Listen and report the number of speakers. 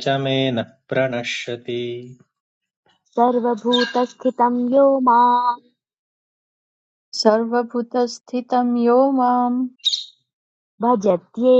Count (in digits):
3